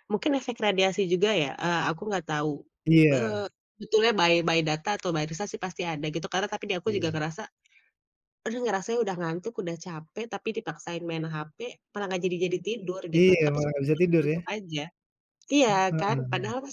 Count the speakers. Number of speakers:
two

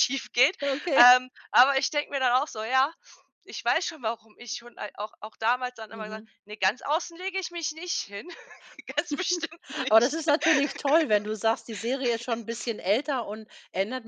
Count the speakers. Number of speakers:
two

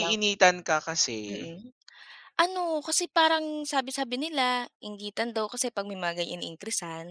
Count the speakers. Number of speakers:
two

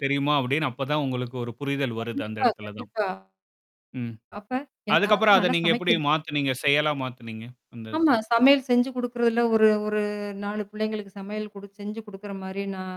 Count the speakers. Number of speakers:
two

